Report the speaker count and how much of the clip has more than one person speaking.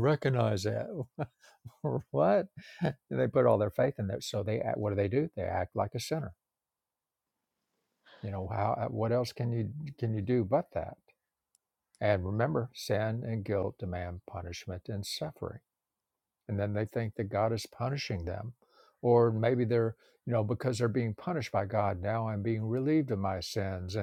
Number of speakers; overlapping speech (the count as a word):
one, no overlap